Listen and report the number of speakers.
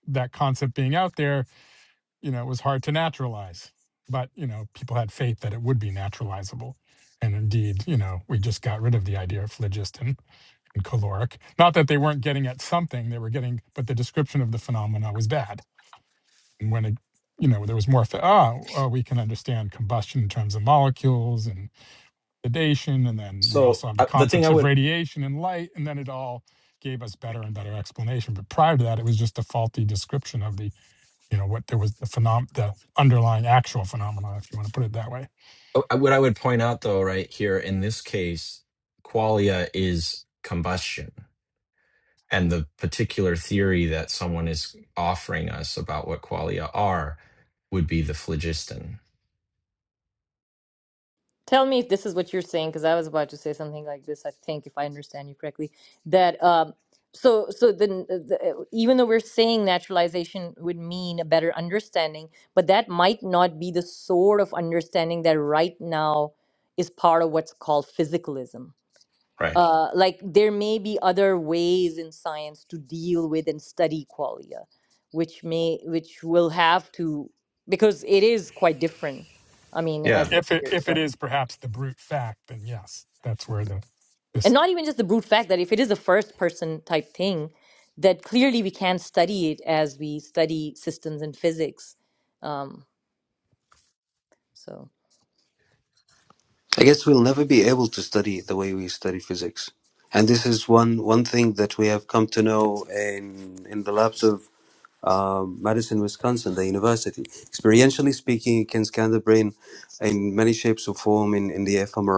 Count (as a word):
four